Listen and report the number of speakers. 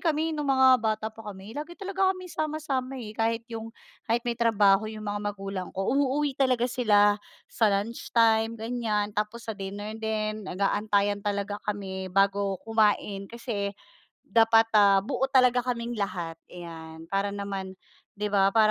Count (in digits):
1